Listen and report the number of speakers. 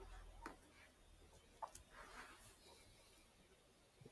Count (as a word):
zero